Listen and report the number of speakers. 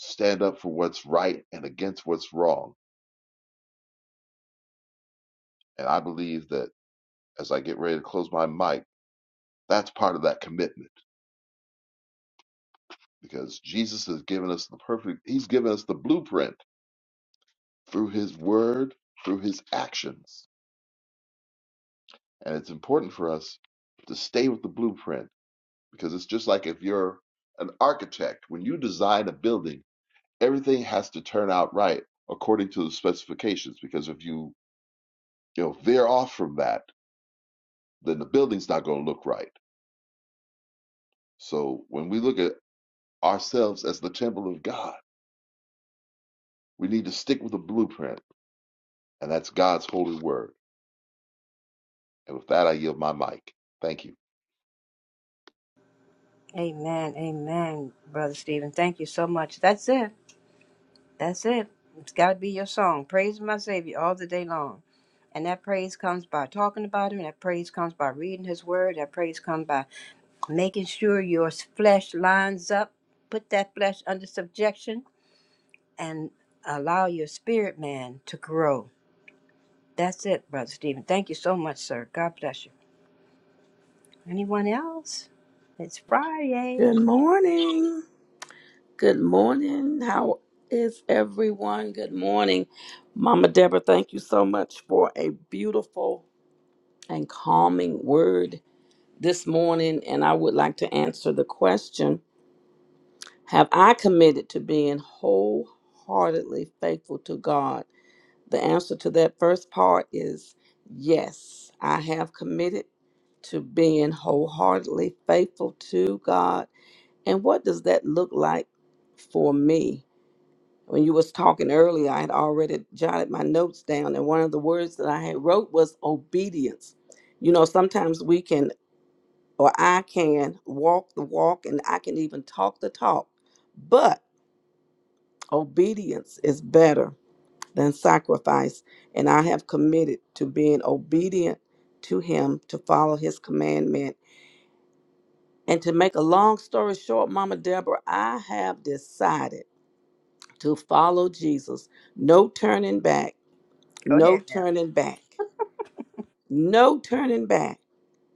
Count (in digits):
3